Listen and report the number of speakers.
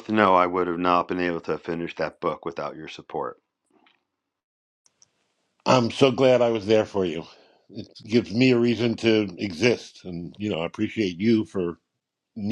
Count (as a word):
two